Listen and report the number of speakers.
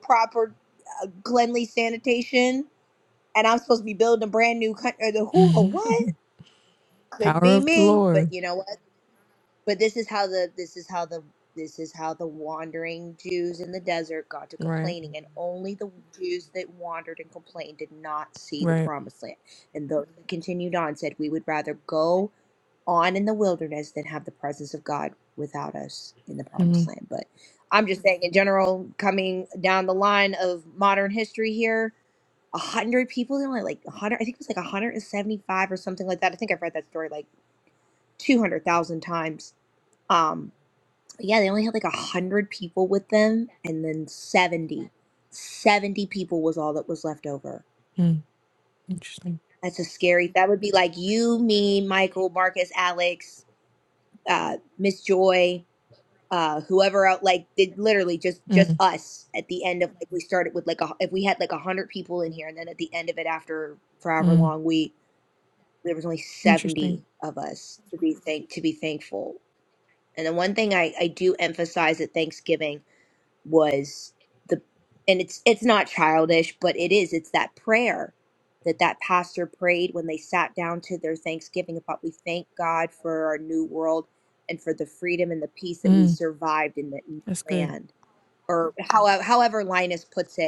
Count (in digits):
2